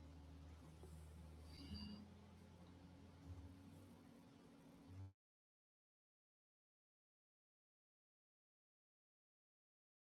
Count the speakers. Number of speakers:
zero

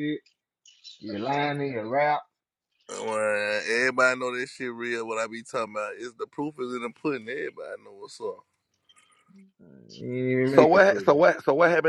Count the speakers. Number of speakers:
three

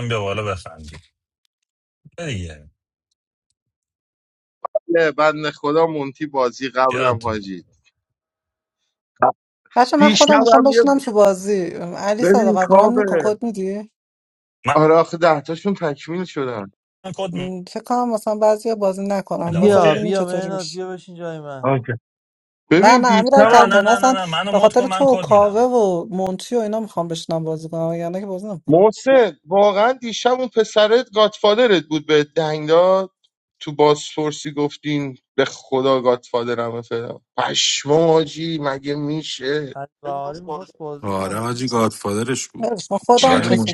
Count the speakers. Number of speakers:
five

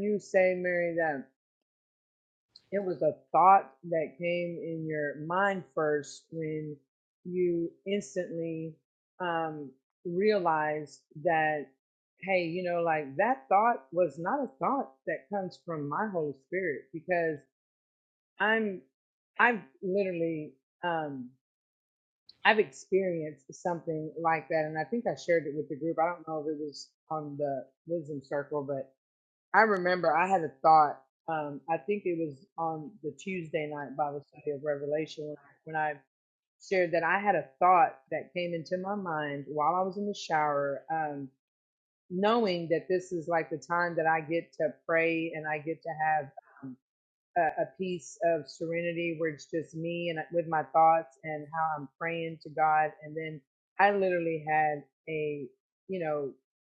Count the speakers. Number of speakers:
one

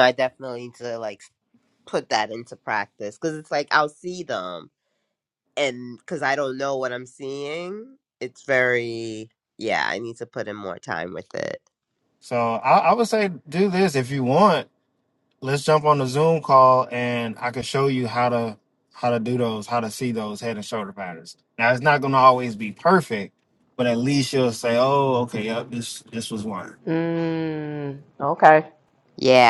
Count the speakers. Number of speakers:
three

